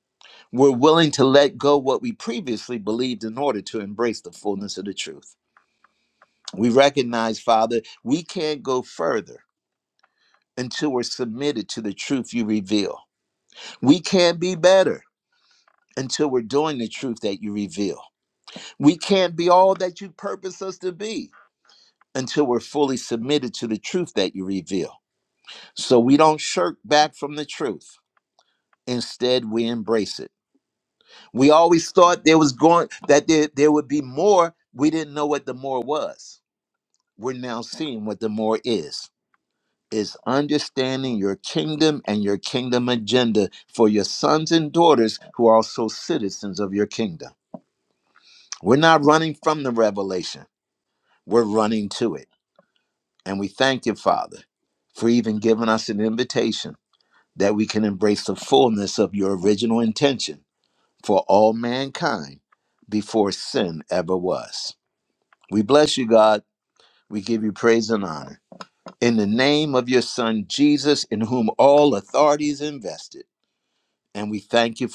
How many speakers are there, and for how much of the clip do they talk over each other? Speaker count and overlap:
one, no overlap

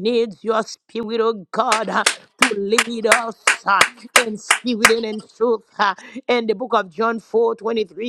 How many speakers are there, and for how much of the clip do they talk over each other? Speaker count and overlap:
one, no overlap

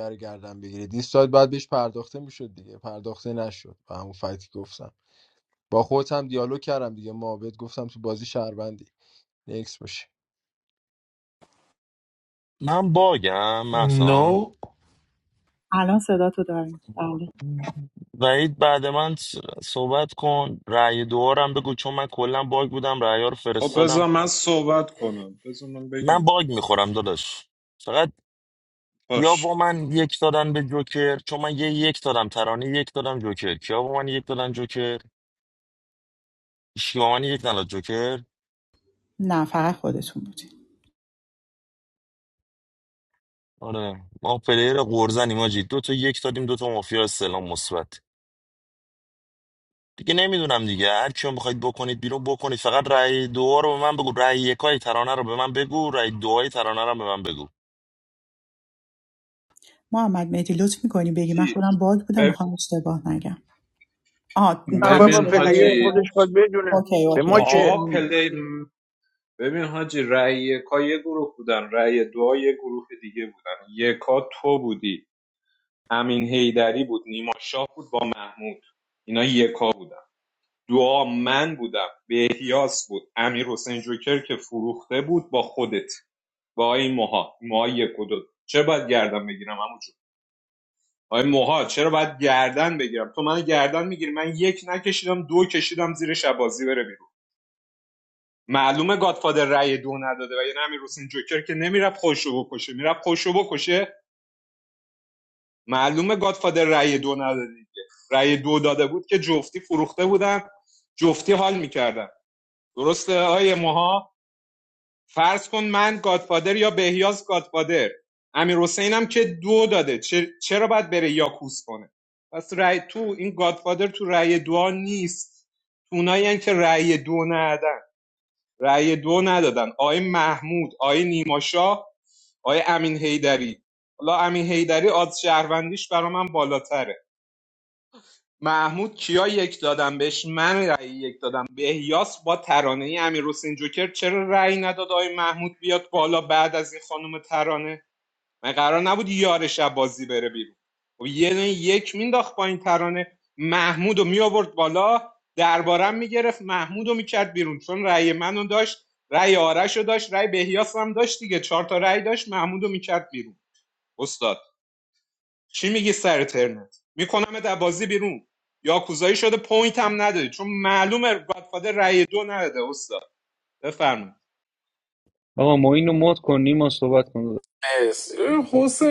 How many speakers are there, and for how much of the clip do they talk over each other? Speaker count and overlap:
seven, about 2%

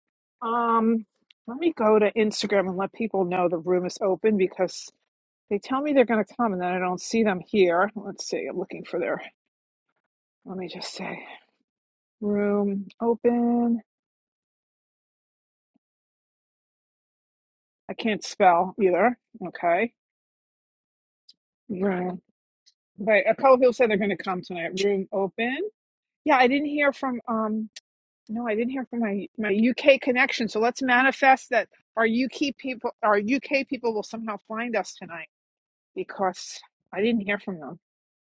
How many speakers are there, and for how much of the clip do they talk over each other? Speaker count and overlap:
one, no overlap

